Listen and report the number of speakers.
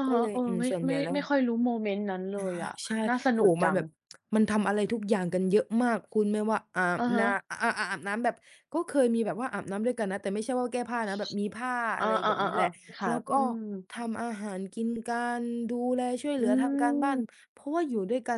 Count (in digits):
2